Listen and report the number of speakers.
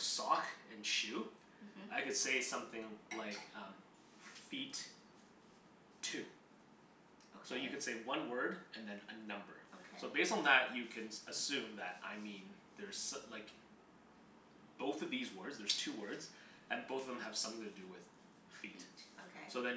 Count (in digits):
2